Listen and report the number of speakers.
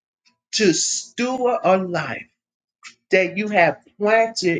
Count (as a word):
one